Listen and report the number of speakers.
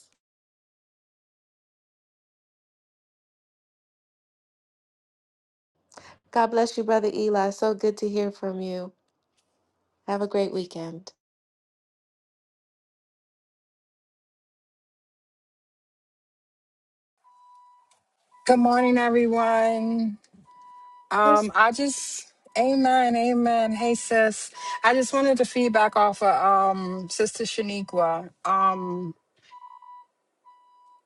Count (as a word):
two